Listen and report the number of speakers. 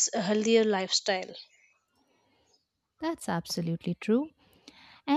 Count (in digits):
2